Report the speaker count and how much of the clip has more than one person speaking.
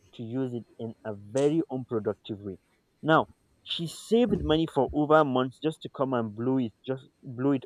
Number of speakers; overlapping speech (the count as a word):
one, no overlap